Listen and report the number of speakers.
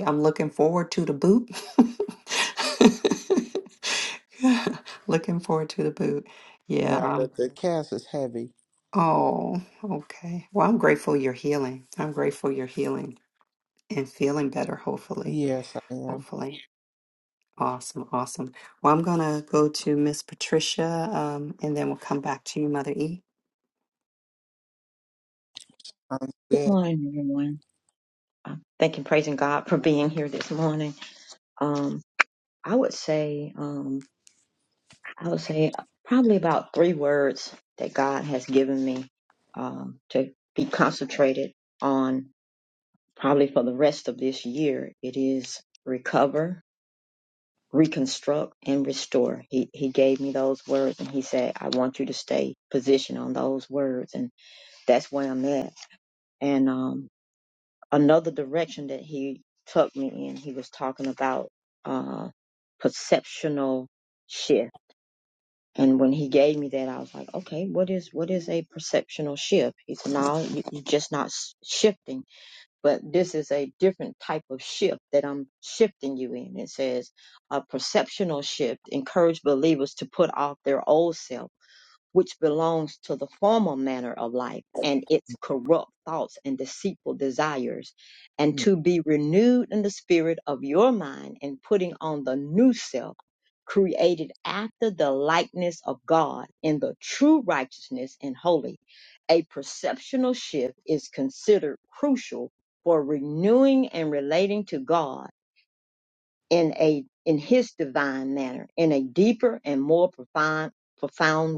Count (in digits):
3